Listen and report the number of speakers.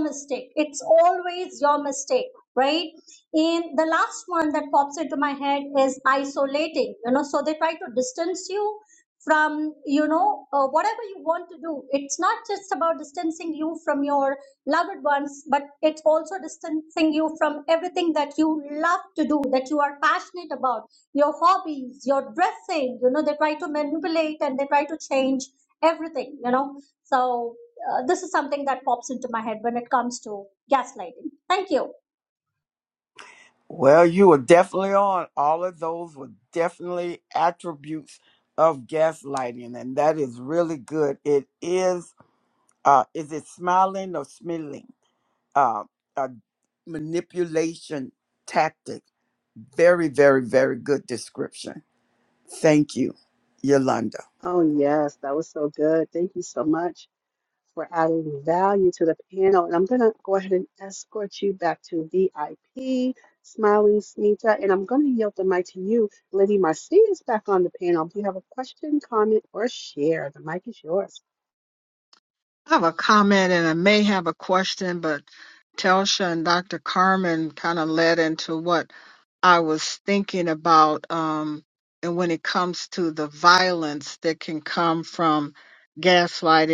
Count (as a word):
four